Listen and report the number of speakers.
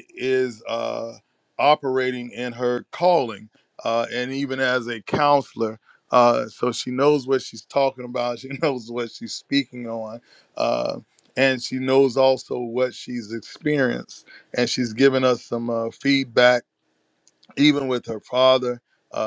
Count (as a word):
one